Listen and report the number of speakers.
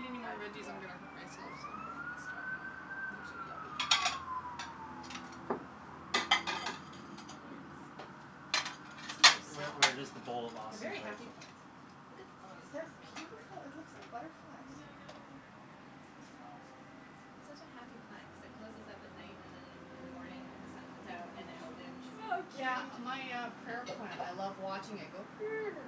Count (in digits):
4